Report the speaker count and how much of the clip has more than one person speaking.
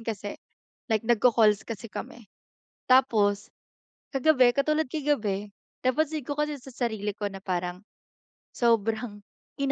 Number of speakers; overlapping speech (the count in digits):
1, no overlap